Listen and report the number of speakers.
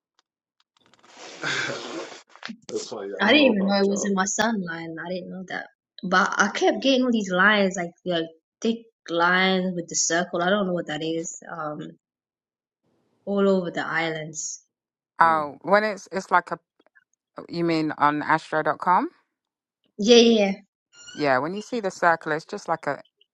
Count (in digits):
3